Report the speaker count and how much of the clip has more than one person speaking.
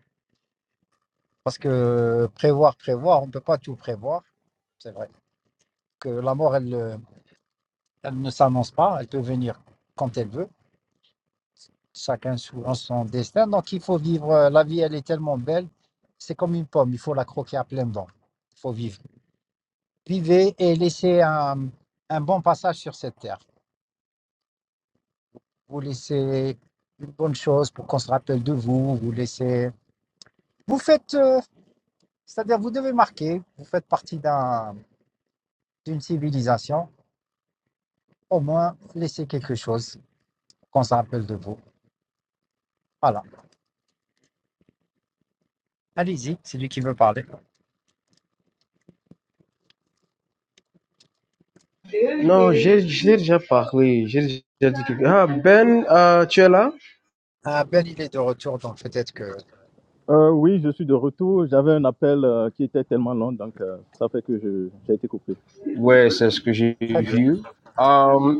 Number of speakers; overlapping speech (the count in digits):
3, under 1%